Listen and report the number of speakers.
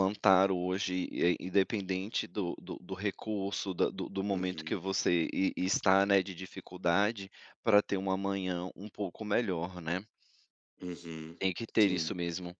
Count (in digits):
2